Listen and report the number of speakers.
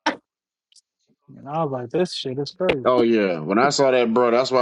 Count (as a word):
two